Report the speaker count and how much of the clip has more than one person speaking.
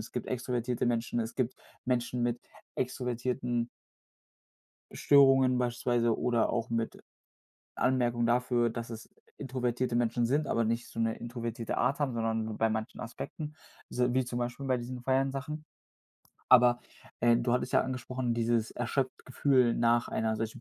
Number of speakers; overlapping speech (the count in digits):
1, no overlap